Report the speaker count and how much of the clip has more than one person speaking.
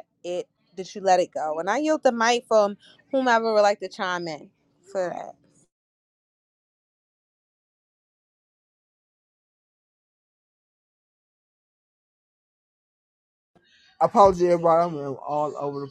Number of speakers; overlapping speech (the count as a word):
two, no overlap